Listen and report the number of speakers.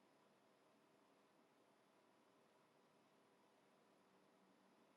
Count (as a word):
zero